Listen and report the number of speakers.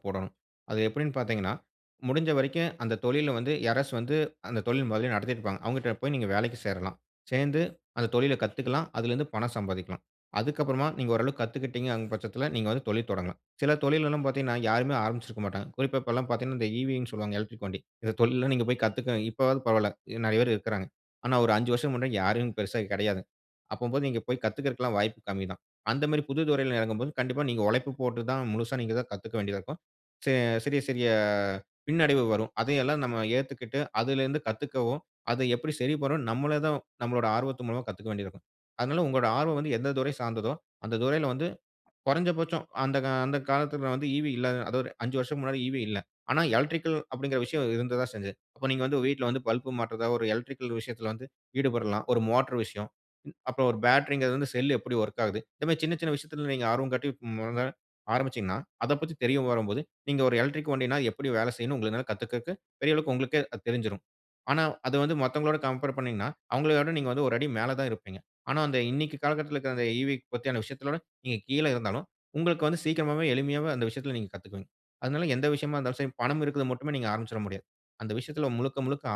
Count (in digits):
1